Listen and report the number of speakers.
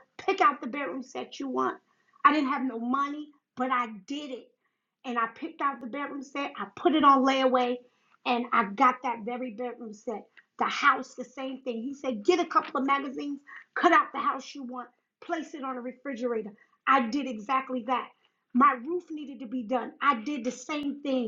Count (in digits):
1